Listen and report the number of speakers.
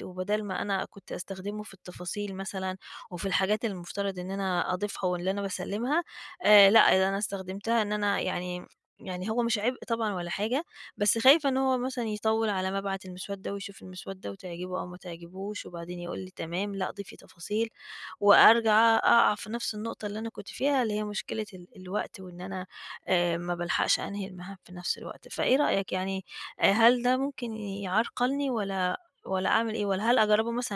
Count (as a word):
one